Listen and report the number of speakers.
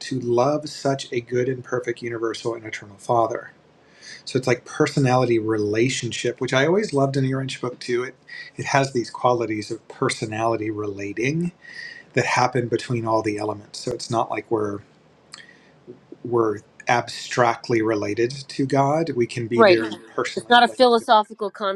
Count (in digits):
2